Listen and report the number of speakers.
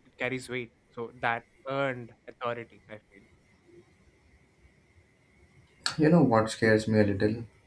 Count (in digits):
2